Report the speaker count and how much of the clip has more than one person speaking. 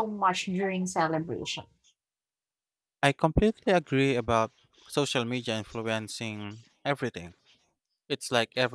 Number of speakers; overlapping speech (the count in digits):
2, no overlap